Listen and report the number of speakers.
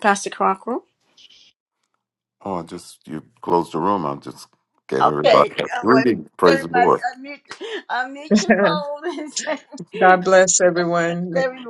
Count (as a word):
three